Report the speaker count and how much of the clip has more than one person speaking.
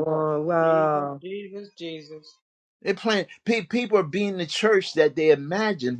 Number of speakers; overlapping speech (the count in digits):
3, about 10%